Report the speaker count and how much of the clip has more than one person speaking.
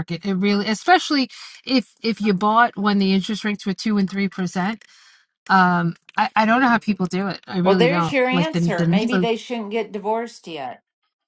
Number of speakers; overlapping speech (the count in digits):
2, about 14%